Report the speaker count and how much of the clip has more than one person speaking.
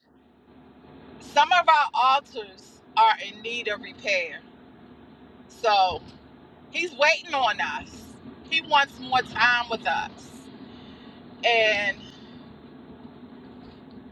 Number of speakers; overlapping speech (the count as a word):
one, no overlap